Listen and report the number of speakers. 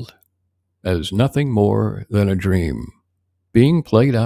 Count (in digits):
1